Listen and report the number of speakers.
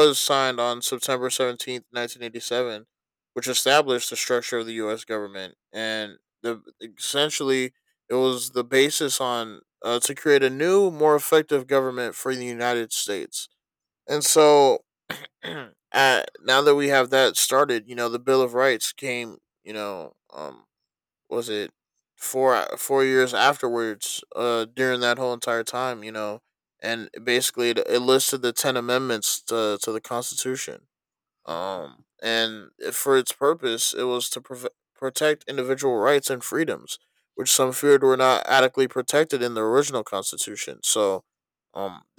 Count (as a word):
one